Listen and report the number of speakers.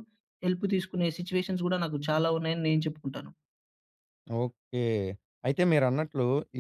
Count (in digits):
2